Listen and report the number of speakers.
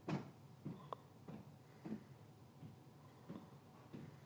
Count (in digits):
0